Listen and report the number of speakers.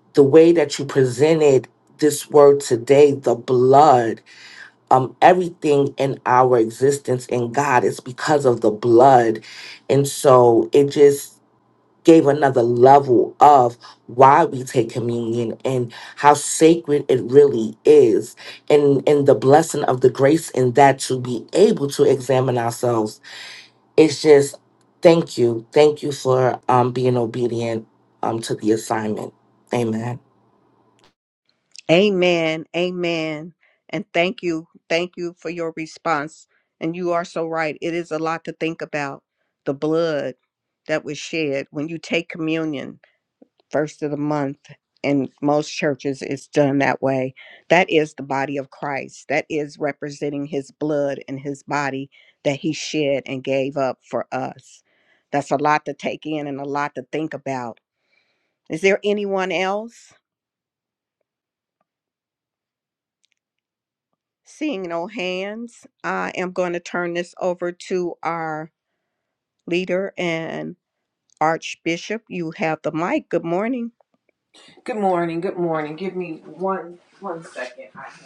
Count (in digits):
3